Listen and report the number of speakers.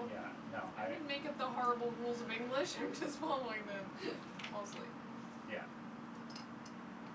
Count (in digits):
2